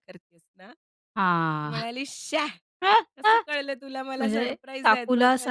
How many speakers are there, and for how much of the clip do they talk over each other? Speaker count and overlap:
two, about 27%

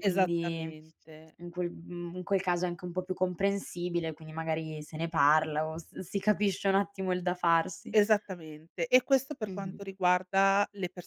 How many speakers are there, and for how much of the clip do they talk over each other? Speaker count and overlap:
two, about 9%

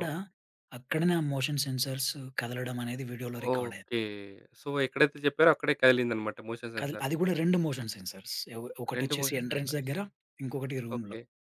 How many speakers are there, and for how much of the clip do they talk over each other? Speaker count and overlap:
two, about 15%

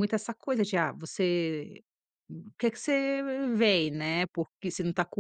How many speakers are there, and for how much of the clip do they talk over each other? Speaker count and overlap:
one, no overlap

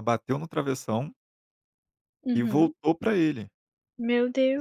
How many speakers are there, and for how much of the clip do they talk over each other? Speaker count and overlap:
two, about 9%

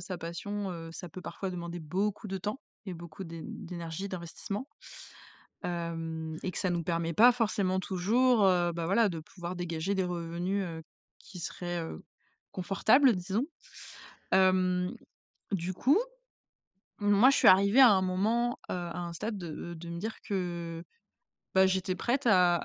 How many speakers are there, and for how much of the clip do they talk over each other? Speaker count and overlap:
one, no overlap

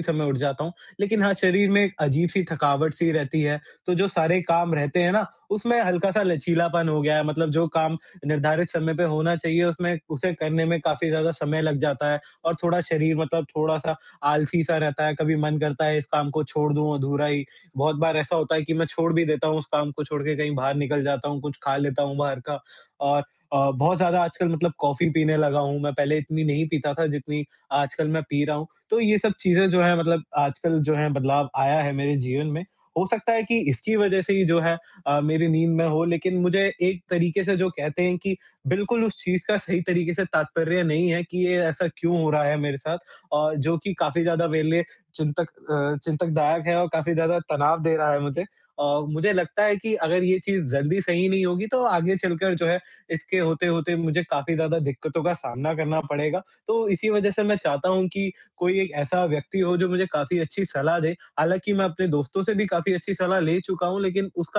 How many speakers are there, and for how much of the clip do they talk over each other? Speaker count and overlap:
one, no overlap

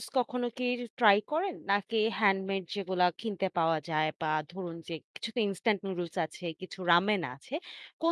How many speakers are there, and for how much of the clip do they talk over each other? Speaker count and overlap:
one, no overlap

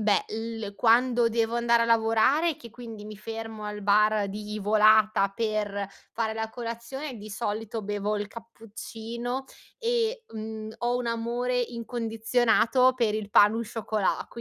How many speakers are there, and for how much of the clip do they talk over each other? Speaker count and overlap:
one, no overlap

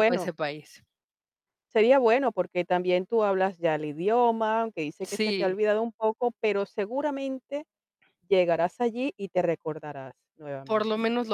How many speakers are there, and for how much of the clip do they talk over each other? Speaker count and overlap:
two, about 7%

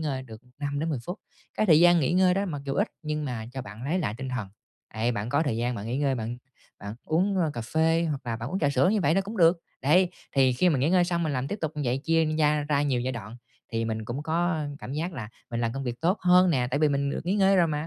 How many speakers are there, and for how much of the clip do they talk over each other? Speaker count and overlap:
one, no overlap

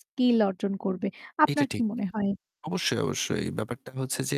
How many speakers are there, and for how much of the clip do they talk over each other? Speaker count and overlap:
two, about 8%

